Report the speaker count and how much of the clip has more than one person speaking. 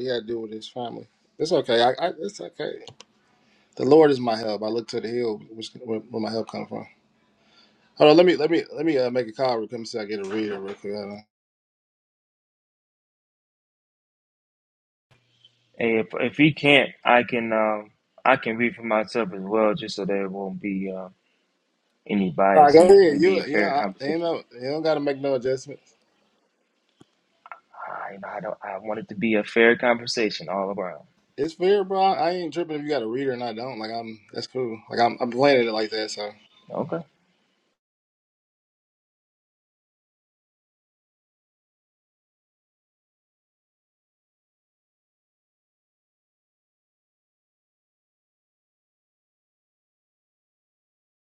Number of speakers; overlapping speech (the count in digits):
2, about 3%